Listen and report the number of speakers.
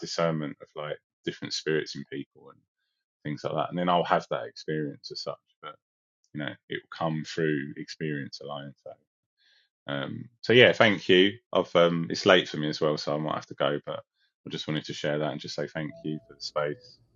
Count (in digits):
1